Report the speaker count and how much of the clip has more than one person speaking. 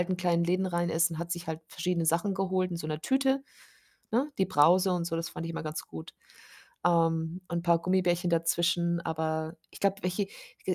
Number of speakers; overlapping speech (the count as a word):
one, no overlap